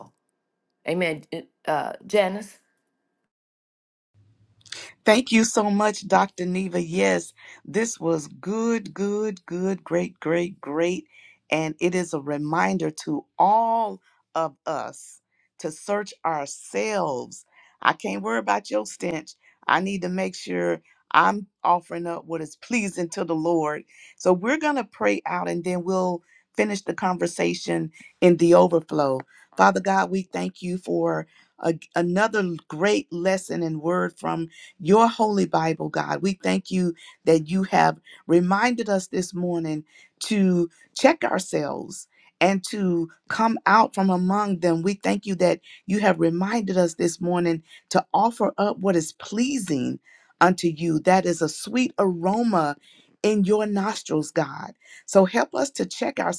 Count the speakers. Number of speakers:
2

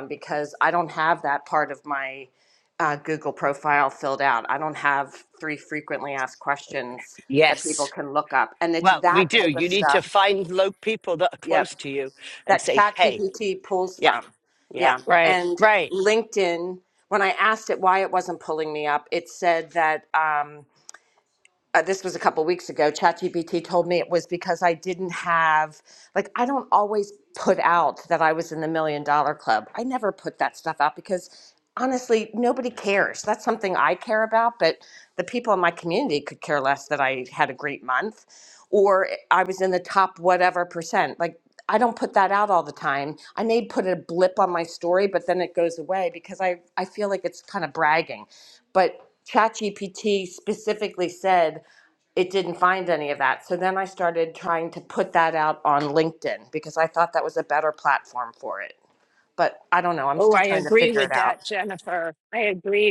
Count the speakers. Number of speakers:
3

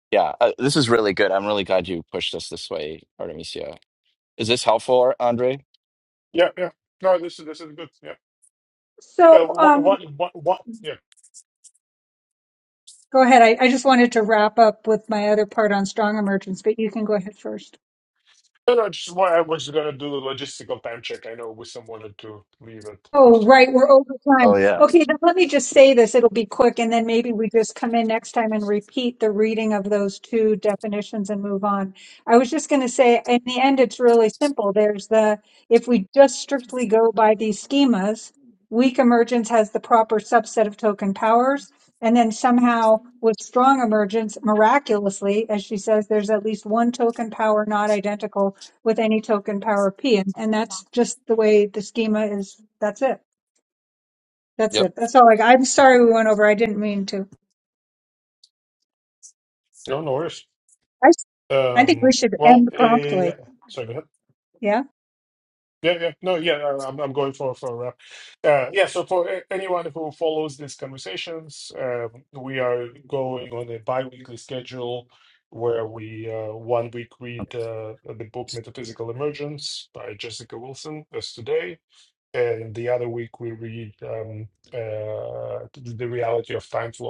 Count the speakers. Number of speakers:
3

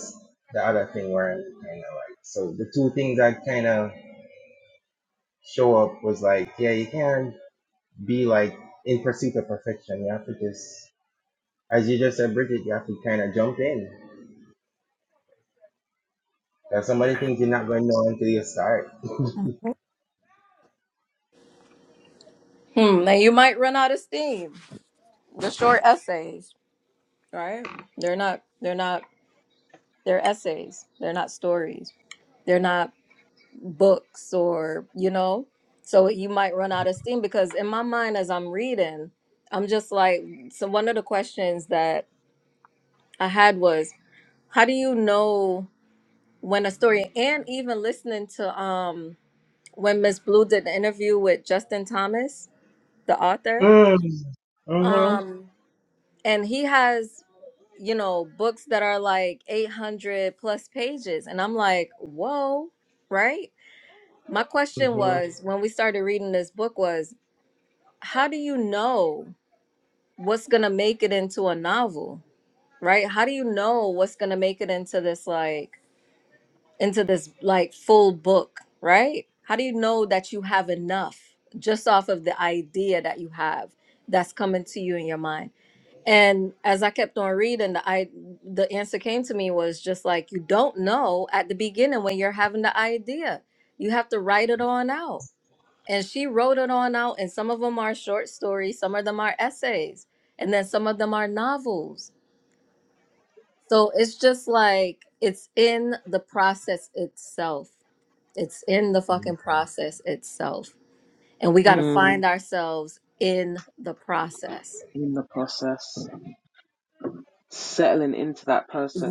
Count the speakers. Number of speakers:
3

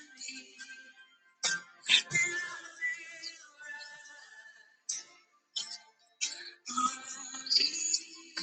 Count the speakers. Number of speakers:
0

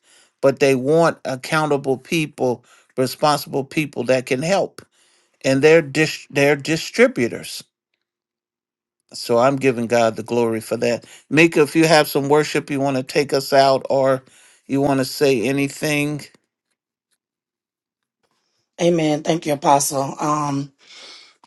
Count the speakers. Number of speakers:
2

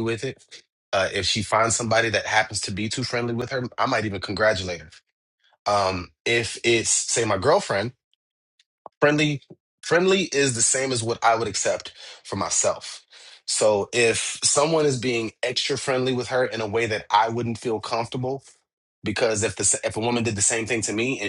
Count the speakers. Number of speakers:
1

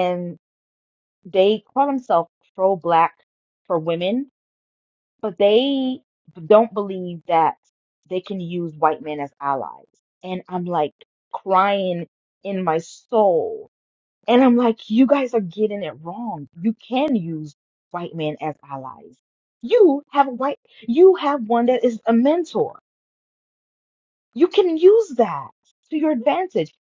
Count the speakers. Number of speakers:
1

